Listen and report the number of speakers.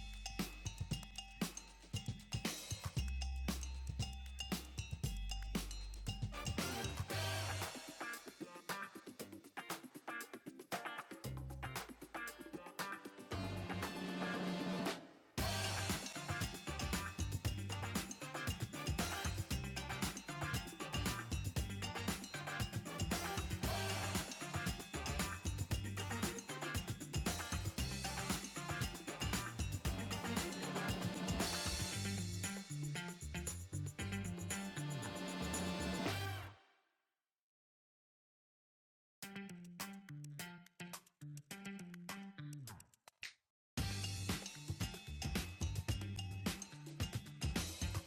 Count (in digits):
0